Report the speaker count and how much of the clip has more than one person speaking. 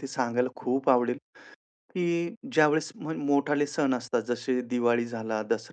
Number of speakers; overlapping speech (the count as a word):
one, no overlap